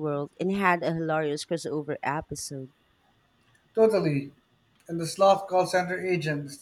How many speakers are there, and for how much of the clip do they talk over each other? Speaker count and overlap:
2, no overlap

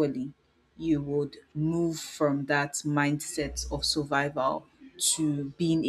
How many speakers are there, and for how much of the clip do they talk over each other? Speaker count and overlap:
1, no overlap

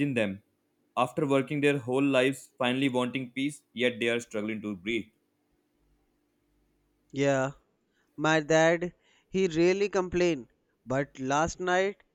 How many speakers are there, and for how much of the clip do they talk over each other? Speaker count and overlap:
2, no overlap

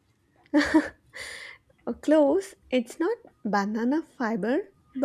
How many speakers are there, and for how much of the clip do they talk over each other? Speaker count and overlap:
1, no overlap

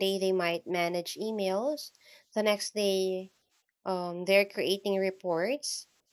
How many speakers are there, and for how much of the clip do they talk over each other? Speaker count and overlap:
1, no overlap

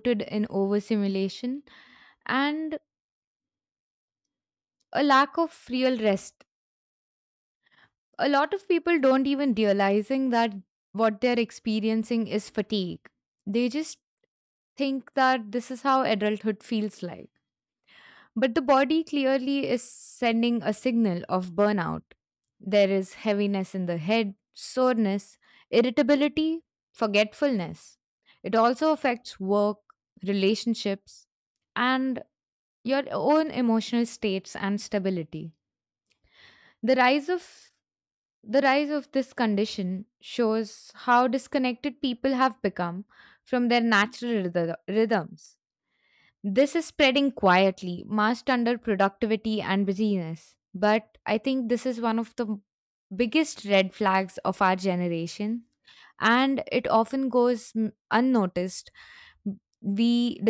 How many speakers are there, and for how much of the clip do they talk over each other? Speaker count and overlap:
1, no overlap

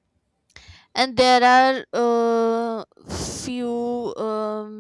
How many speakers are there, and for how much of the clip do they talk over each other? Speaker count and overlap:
1, no overlap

